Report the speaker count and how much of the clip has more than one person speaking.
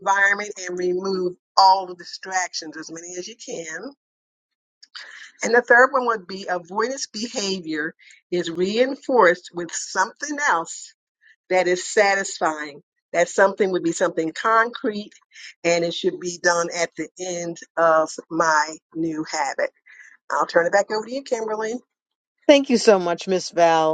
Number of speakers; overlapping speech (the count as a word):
two, no overlap